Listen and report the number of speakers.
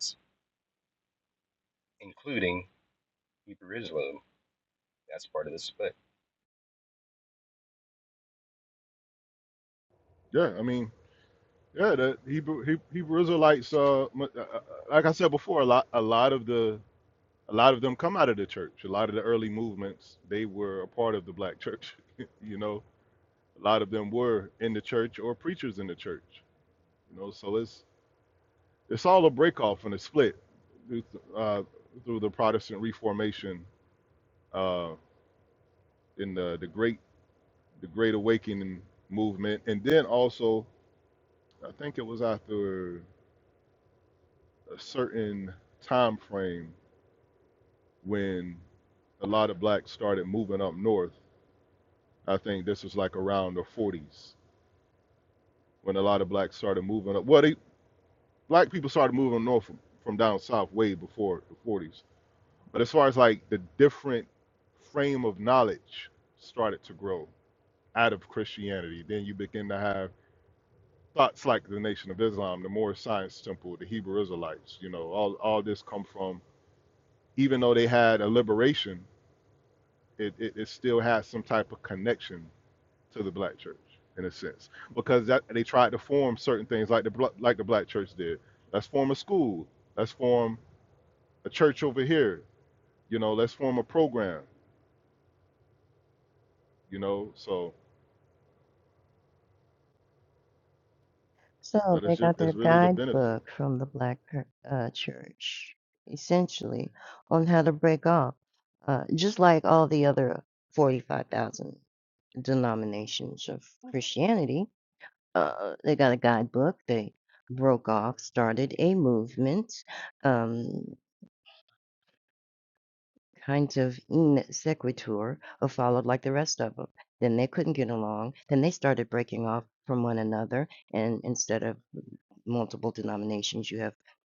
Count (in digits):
3